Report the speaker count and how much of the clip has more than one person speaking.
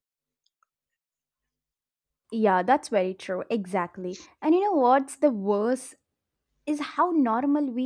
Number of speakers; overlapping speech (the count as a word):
one, no overlap